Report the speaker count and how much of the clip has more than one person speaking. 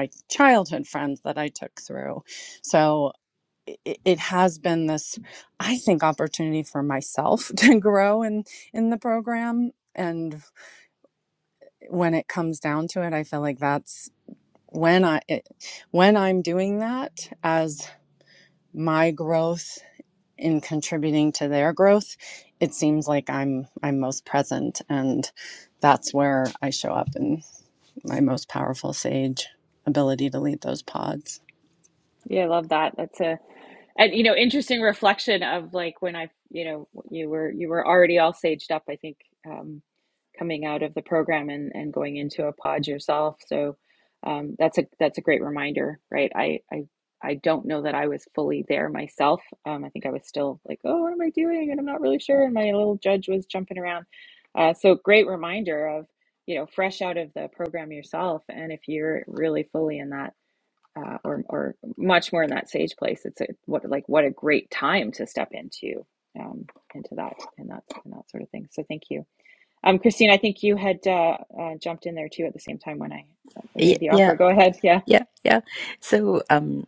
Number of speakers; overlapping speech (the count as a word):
three, about 1%